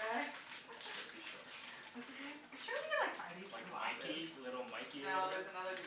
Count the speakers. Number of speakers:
3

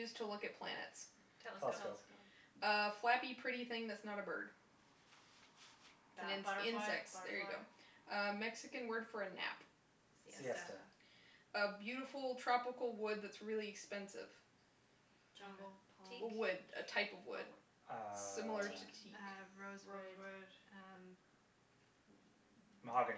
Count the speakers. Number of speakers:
4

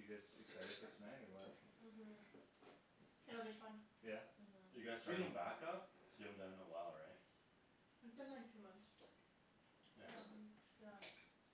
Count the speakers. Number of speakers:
4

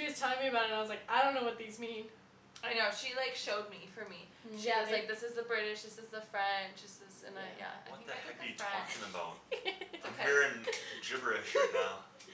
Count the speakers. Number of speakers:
3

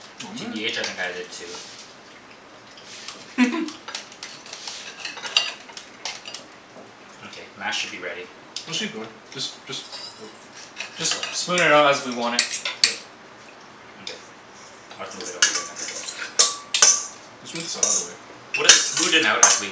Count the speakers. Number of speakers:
3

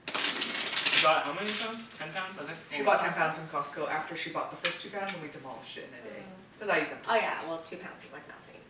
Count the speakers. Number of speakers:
3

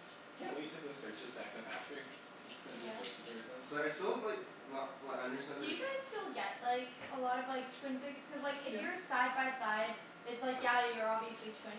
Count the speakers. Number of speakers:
3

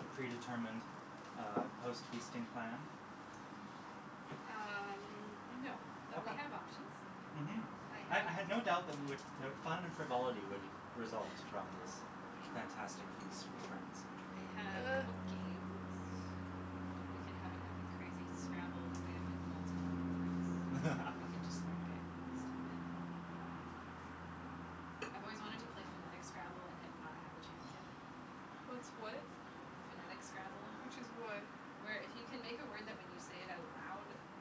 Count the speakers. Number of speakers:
3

